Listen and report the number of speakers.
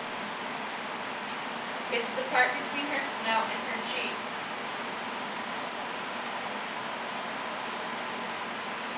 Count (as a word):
one